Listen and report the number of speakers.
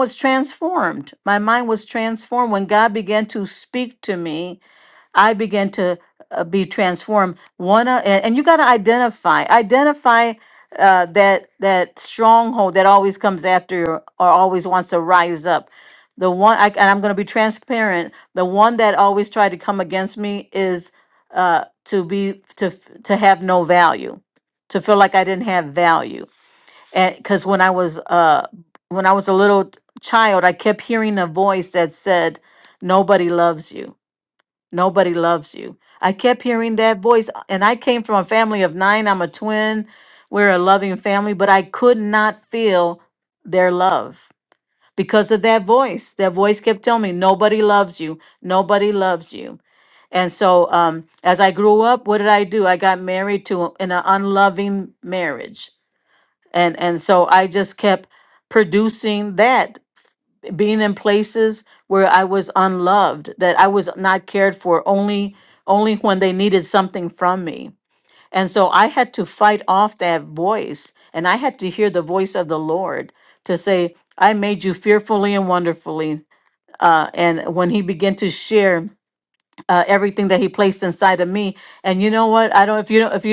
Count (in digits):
1